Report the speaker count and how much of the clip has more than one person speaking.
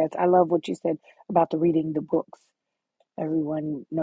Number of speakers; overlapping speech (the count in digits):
1, no overlap